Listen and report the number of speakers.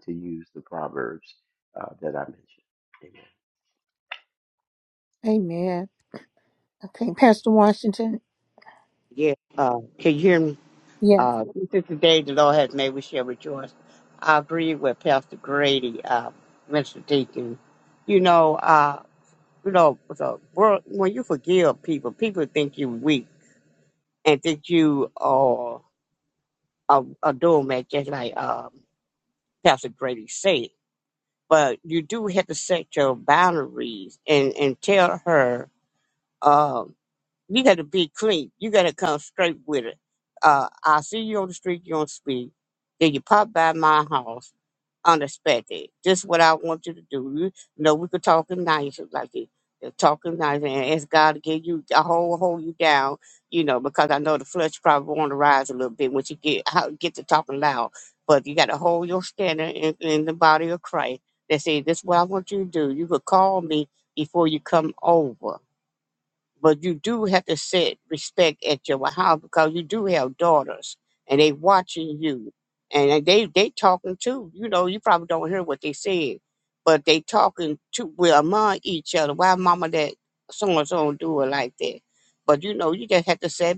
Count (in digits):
3